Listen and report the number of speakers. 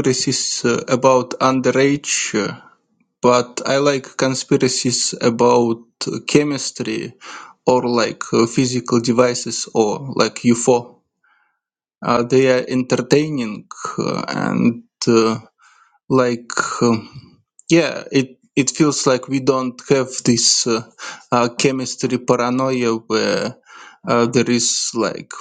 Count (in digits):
1